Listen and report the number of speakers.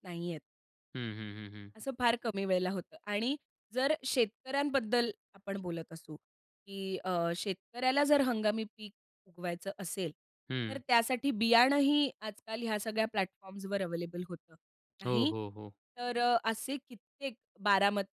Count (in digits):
2